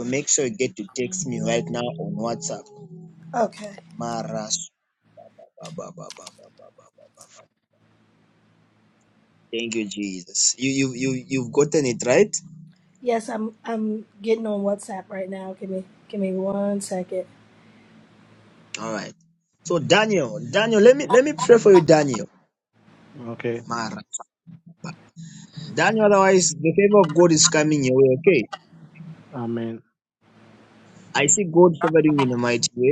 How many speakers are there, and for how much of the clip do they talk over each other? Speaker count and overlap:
three, no overlap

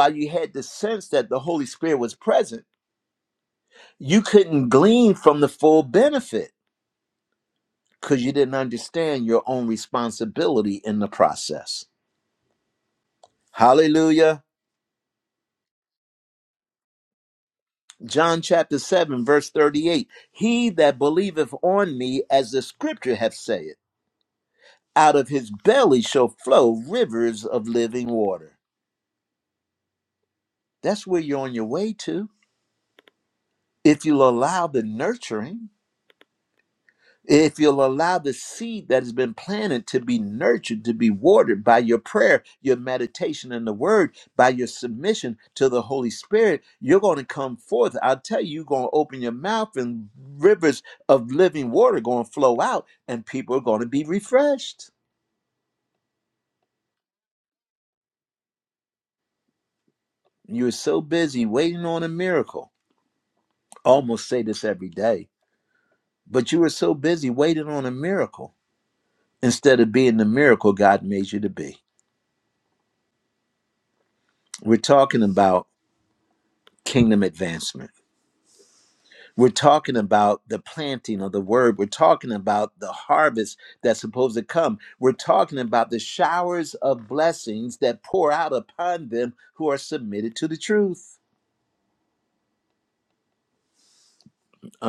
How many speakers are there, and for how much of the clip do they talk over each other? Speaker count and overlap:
one, no overlap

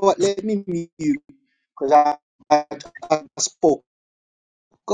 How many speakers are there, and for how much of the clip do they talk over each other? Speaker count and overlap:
one, no overlap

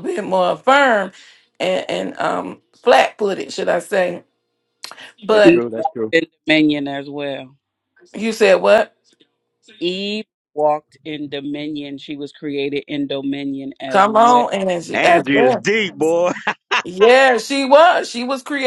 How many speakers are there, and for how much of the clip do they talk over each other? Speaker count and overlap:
three, about 11%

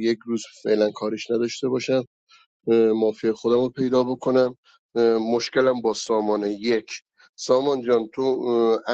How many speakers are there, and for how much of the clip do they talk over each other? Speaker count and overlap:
one, no overlap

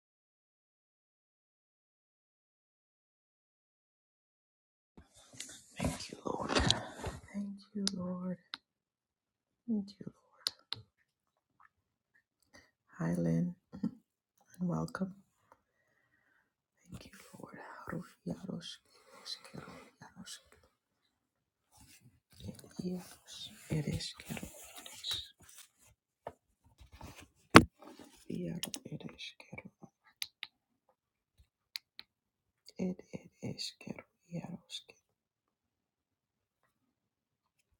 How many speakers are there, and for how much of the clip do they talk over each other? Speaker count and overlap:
one, no overlap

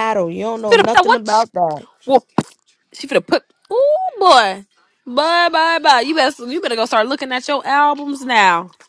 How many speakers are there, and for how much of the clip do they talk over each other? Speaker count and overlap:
two, about 8%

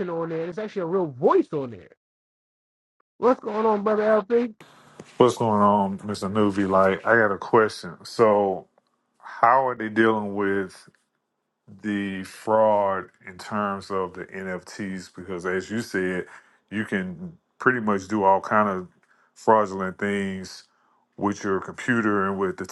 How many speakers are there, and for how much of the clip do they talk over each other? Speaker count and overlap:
two, no overlap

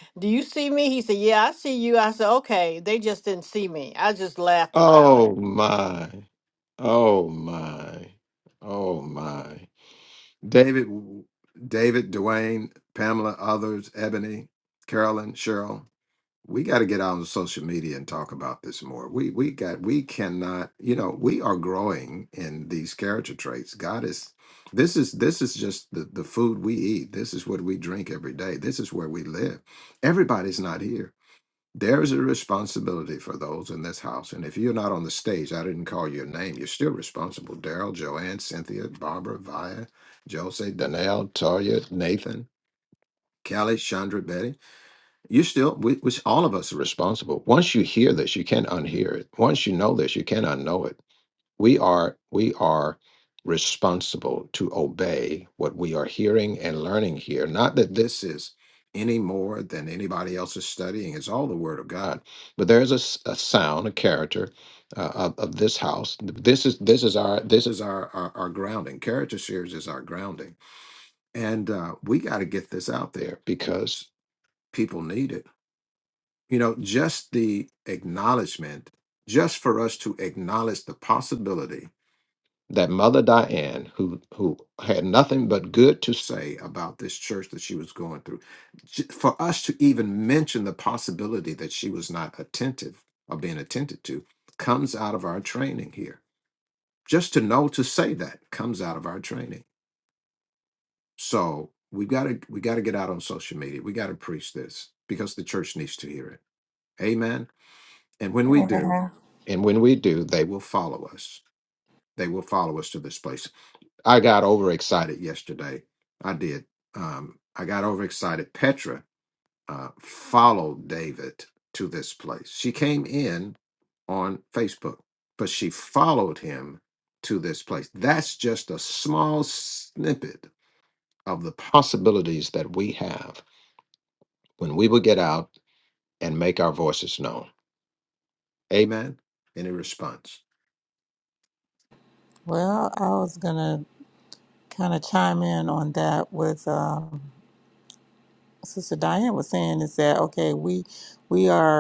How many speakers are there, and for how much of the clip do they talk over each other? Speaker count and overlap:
three, about 1%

